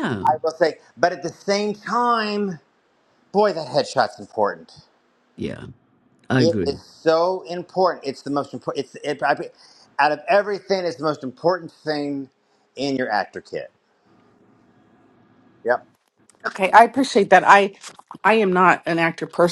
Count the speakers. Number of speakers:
3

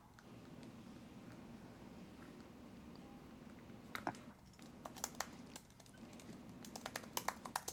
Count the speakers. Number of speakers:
0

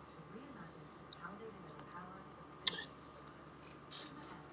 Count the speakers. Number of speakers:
0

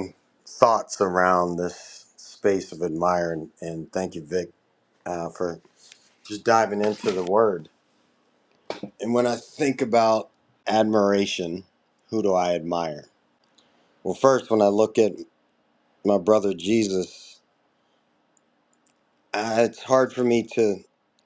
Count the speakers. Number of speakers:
1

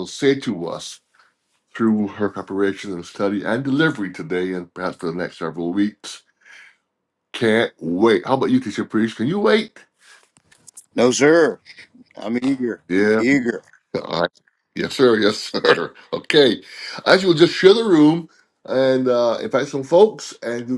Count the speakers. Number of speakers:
2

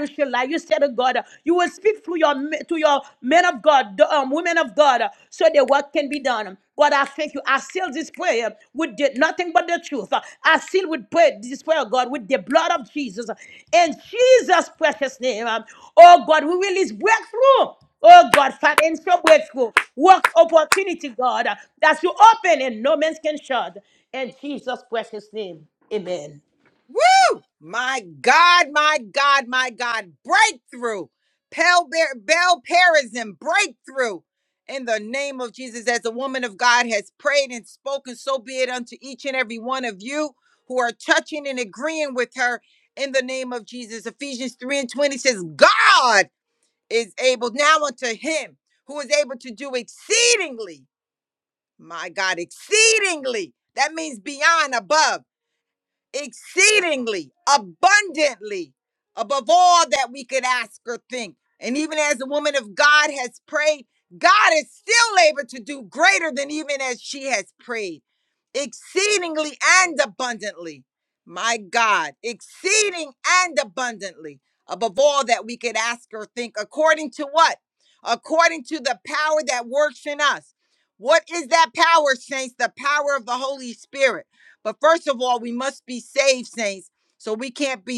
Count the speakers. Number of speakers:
2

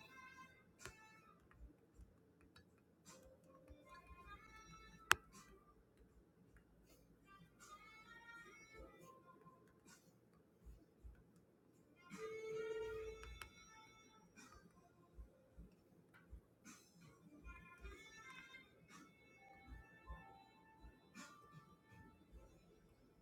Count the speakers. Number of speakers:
0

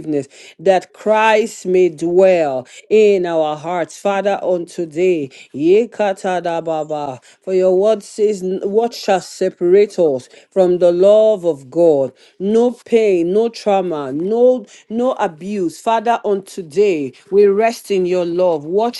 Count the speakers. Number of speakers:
1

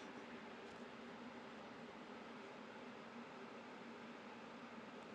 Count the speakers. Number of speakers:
0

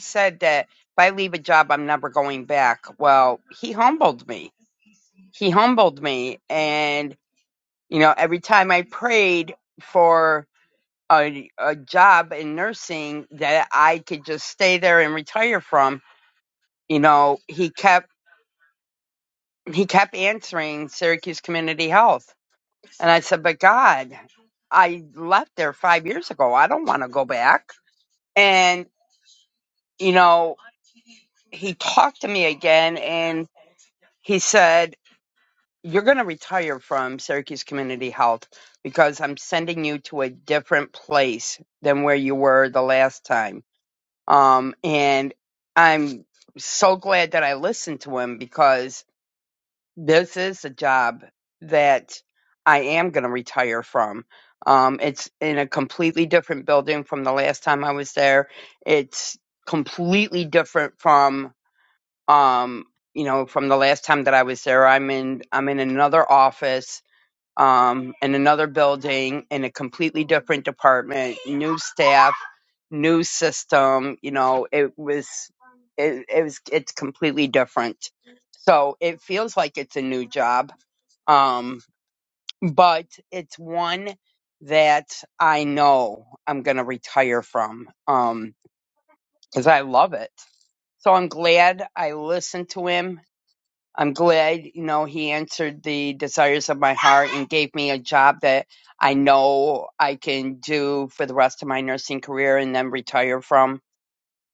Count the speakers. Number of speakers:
1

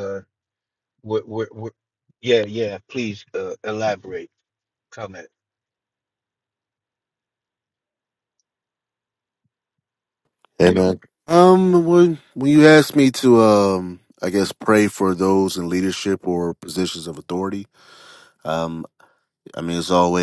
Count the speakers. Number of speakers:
2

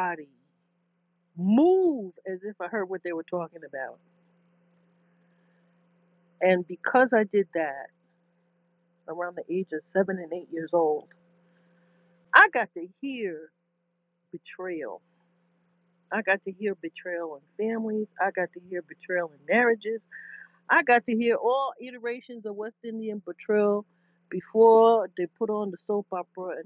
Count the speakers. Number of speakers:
1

